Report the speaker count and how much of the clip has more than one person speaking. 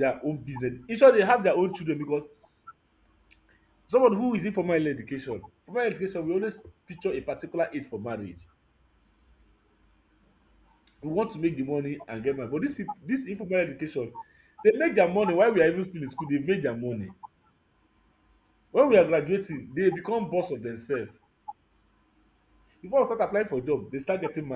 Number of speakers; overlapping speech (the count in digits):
1, no overlap